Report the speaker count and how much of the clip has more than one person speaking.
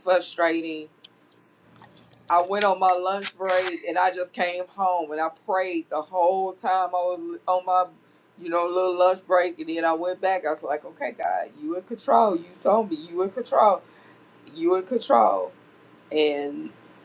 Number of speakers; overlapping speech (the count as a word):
one, no overlap